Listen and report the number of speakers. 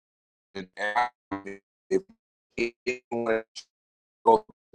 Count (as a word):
one